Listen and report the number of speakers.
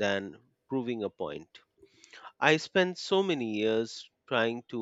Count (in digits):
1